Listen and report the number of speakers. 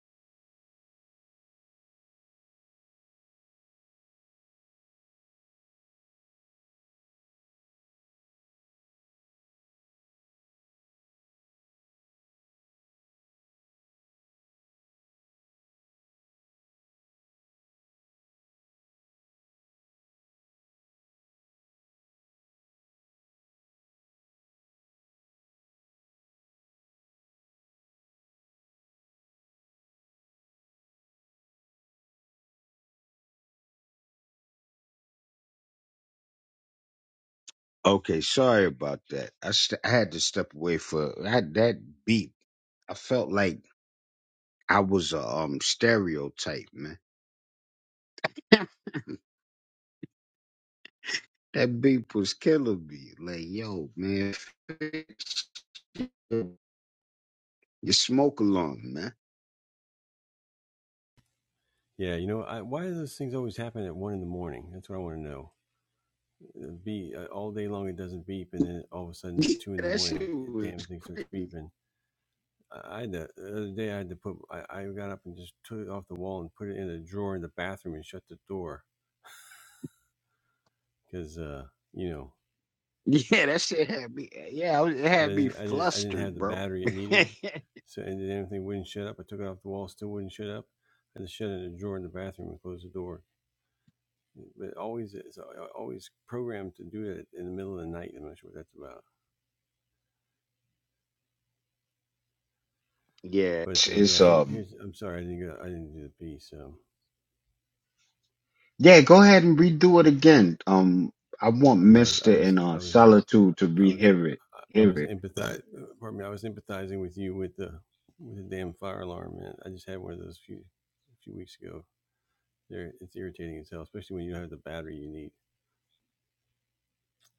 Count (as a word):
two